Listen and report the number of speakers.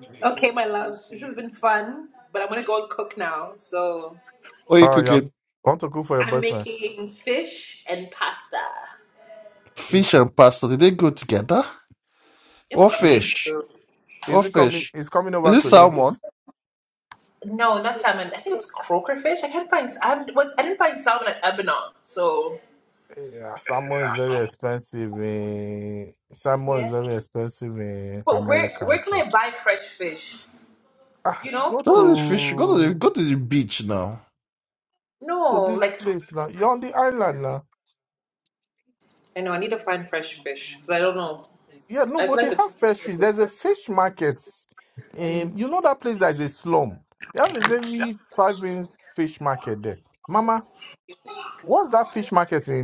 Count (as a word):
three